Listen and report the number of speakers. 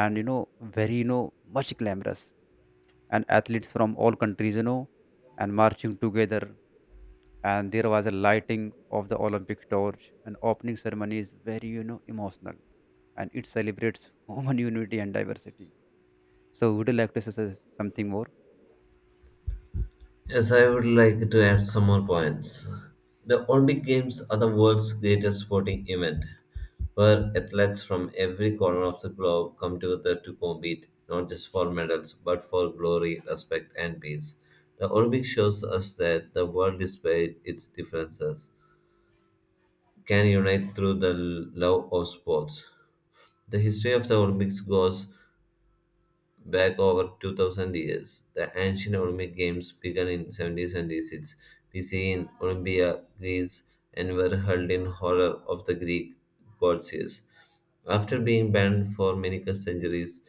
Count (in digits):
2